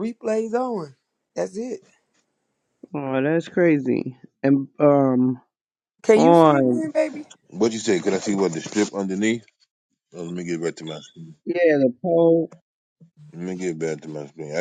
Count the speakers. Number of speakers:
three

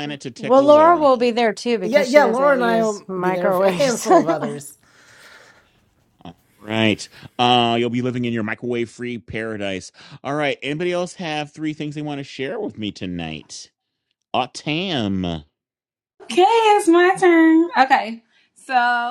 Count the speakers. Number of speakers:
four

